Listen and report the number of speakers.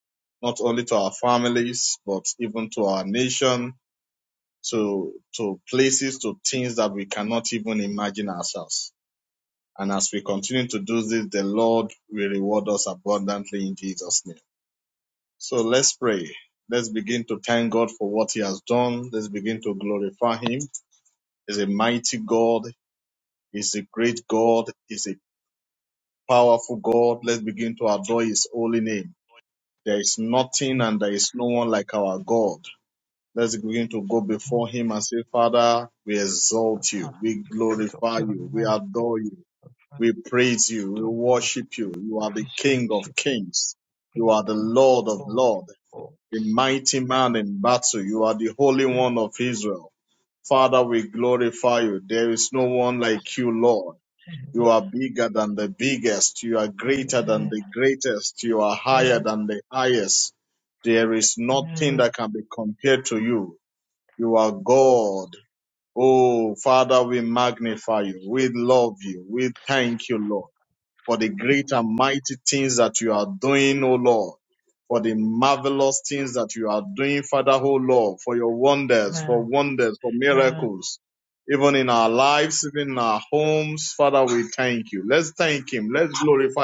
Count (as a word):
one